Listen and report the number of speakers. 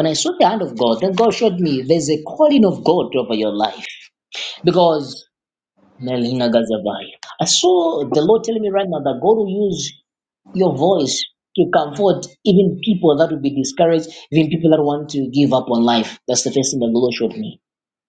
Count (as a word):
one